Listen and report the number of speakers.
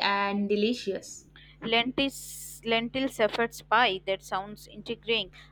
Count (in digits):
2